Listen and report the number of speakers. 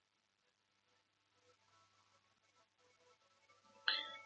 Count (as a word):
zero